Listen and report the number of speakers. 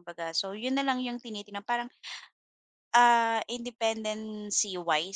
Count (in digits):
1